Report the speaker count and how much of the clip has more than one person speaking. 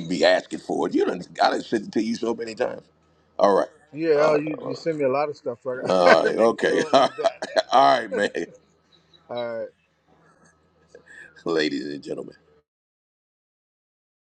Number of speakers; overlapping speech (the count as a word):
two, about 14%